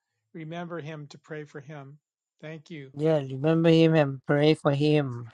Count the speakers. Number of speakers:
2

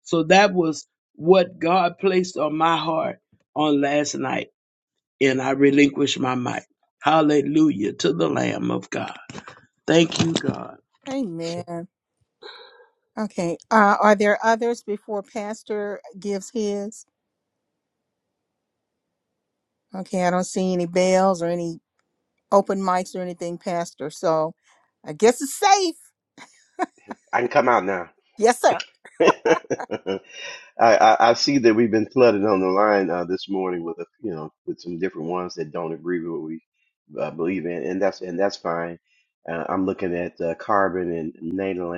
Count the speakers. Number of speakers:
3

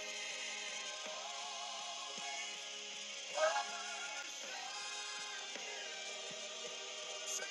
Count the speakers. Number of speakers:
0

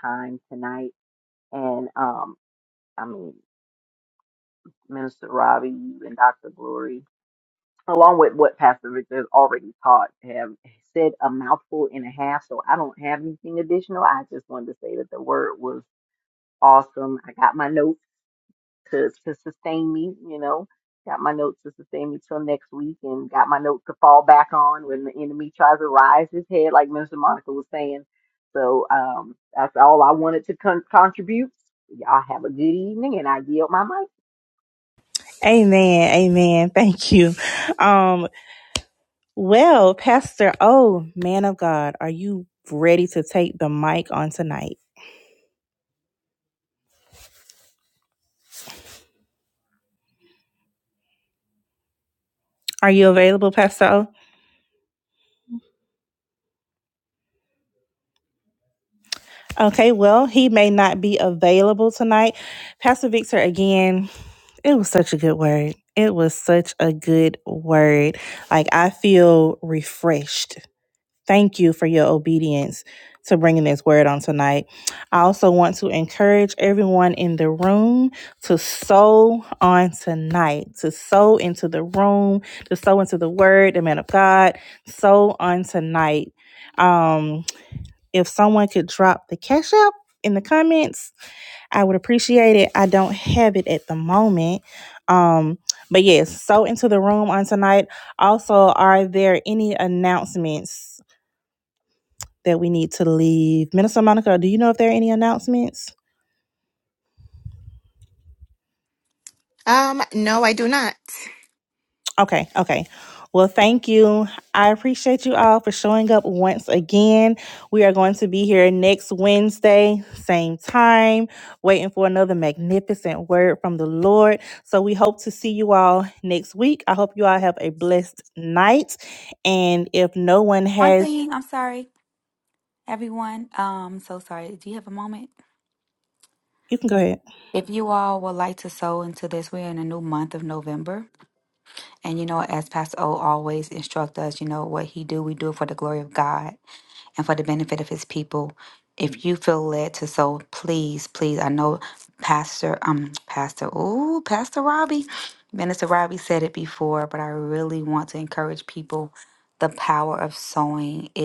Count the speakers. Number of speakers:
4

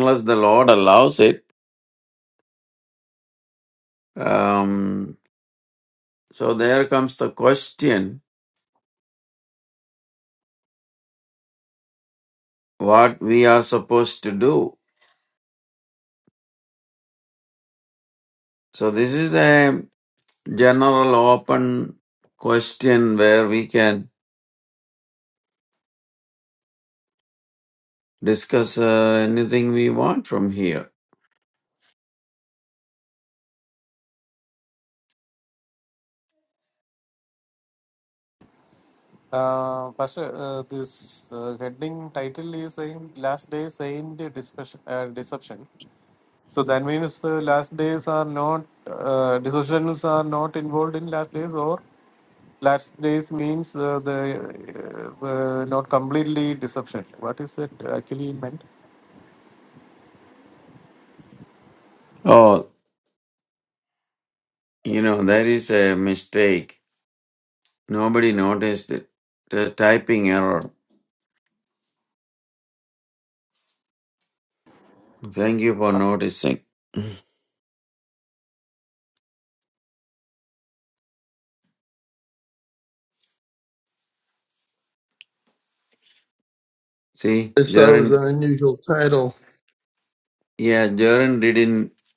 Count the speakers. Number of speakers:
3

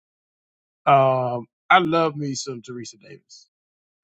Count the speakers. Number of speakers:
1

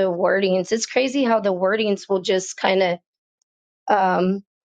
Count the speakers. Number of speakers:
1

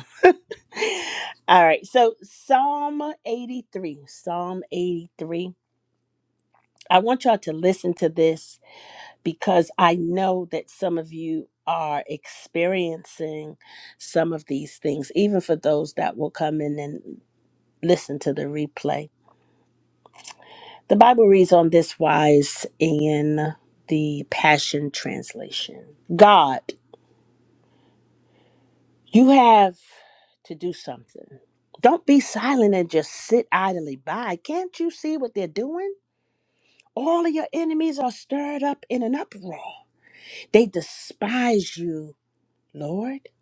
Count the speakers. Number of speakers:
1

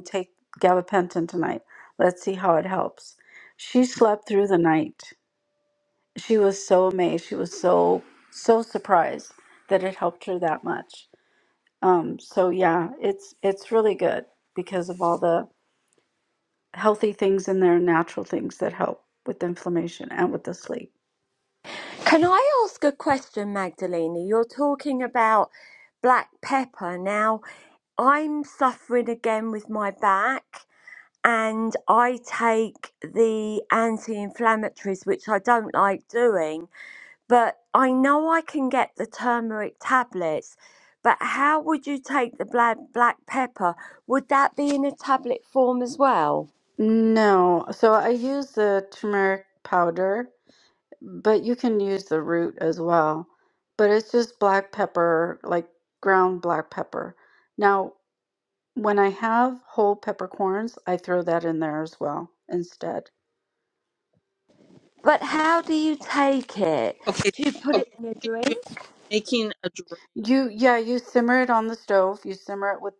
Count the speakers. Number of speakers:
3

